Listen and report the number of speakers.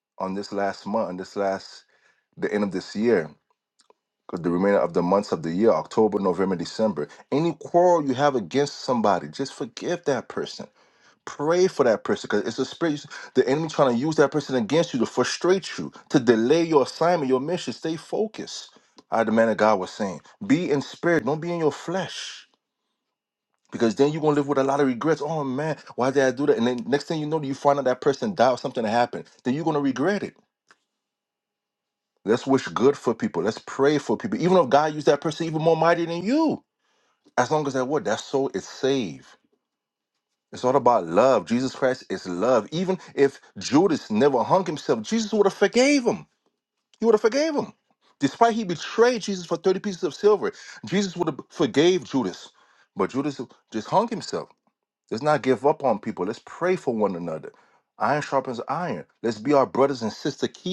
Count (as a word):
one